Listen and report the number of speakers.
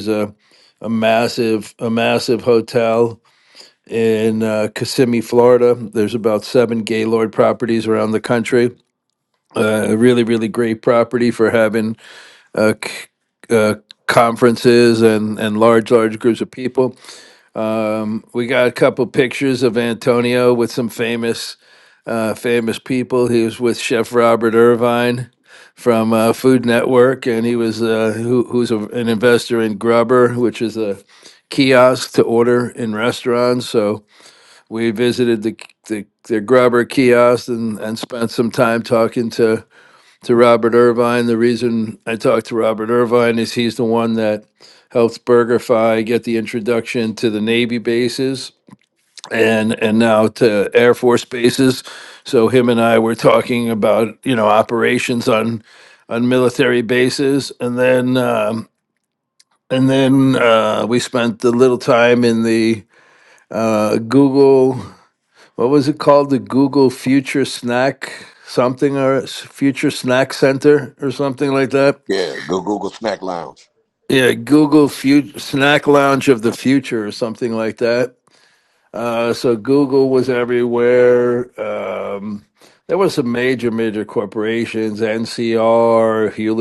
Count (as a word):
two